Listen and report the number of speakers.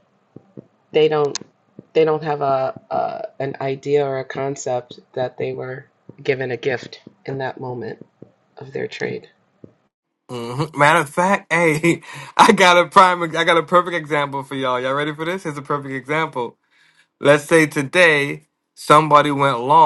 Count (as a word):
two